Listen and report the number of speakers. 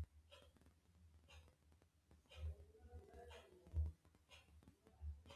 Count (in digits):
0